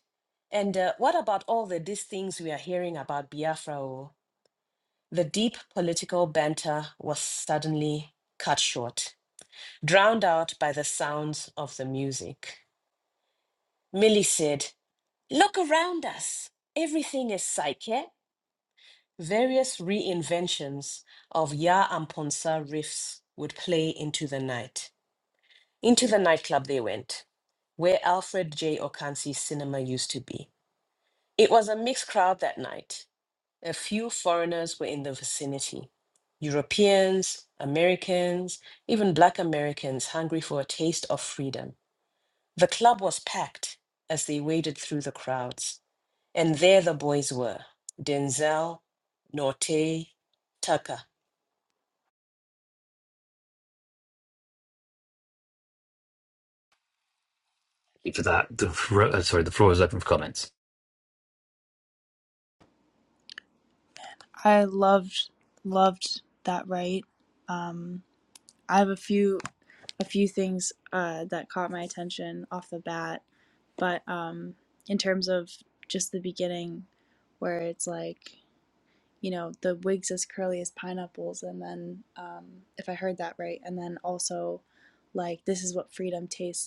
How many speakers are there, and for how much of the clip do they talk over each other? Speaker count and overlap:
3, no overlap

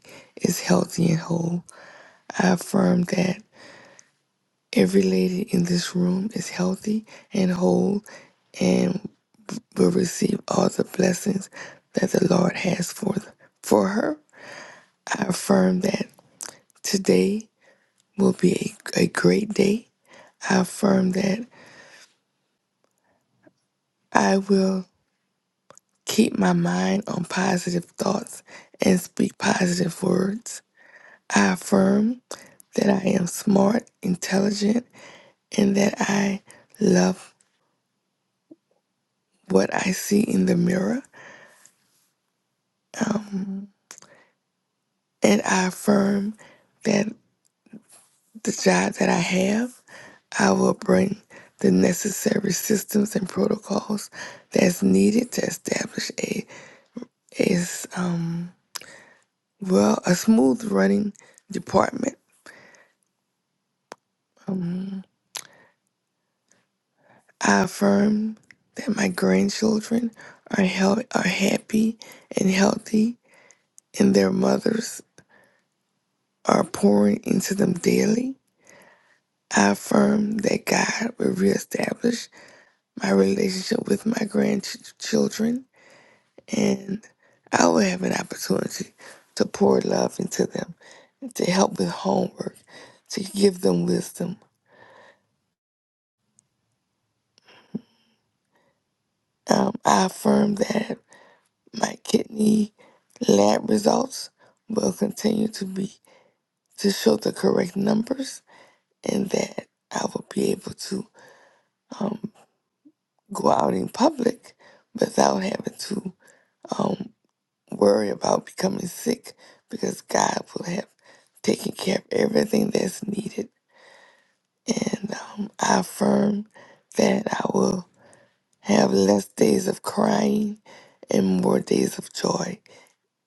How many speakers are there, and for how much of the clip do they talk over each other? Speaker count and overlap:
1, no overlap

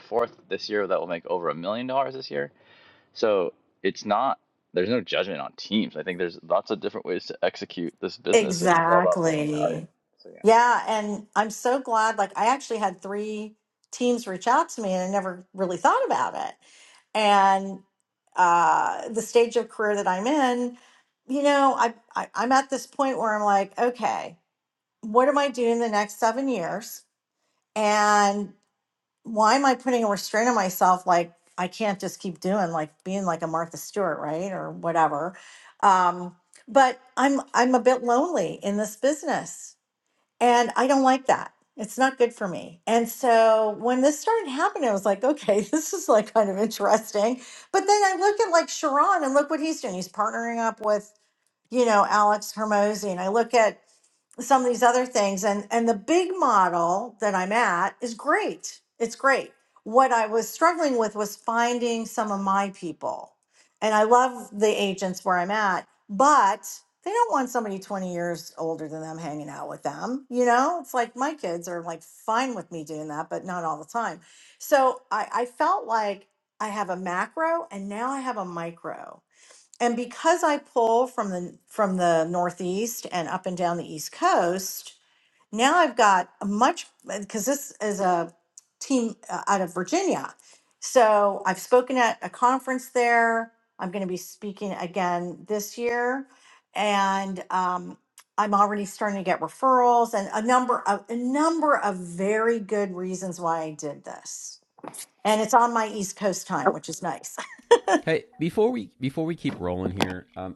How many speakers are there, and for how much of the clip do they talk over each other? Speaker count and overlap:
3, about 1%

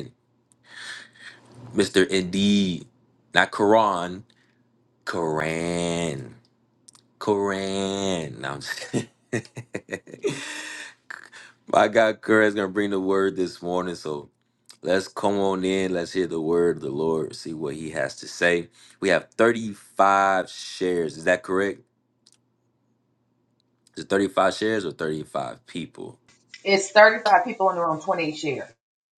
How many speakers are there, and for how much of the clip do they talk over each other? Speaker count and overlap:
2, no overlap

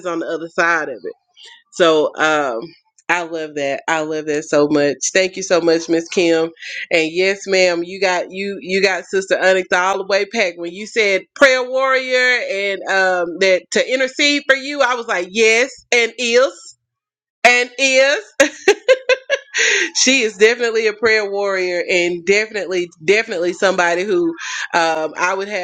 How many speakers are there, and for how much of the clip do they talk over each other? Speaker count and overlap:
1, no overlap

